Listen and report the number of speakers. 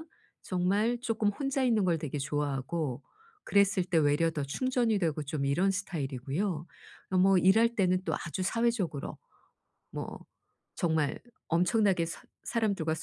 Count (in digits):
1